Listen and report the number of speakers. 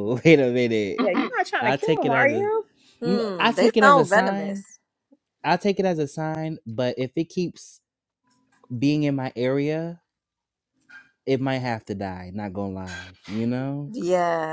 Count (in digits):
3